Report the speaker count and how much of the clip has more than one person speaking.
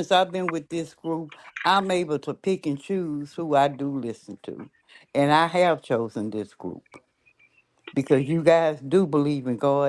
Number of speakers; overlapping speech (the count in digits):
1, no overlap